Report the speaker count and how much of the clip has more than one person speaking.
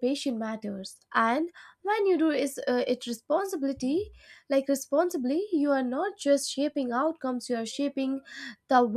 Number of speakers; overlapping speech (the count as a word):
one, no overlap